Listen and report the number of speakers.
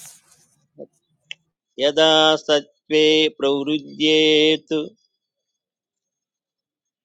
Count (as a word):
one